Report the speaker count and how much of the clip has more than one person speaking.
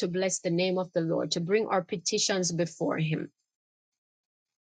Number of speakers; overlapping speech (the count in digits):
1, no overlap